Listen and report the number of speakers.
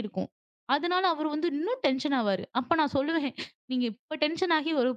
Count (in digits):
1